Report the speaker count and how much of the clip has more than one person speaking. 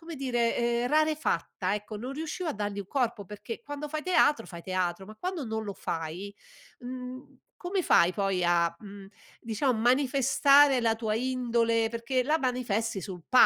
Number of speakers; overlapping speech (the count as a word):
one, no overlap